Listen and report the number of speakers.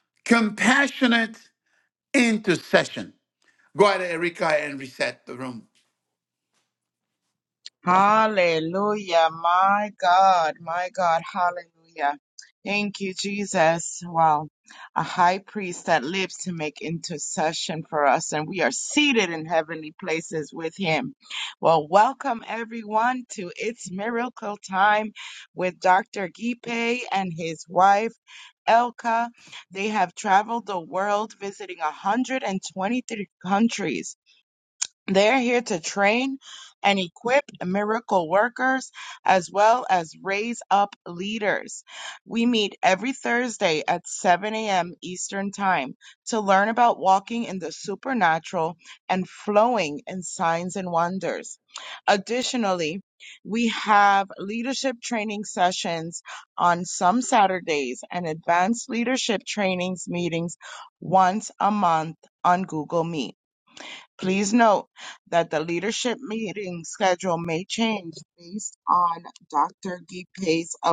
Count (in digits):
2